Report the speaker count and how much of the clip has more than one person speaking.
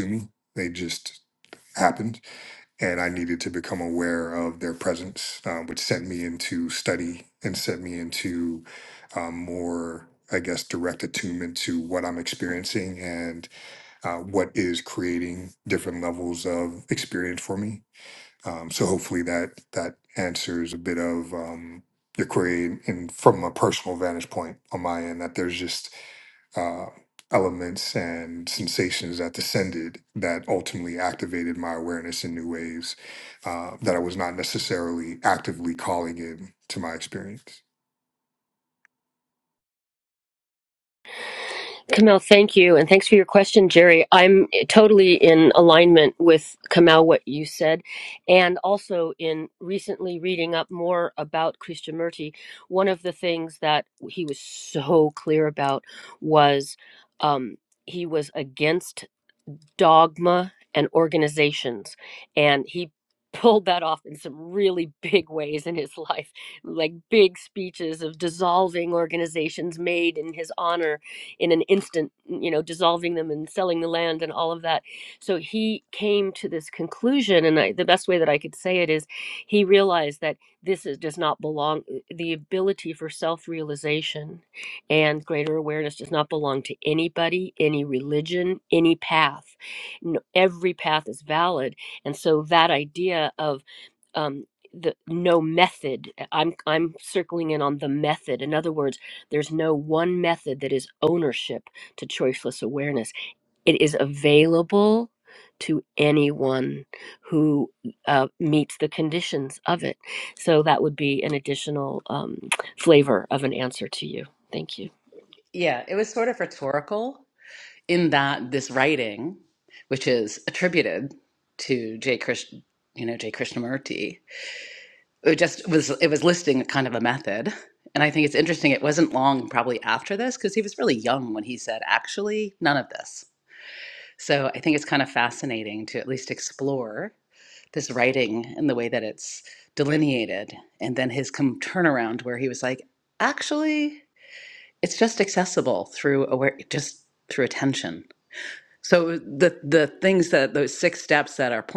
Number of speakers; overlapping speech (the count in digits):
3, no overlap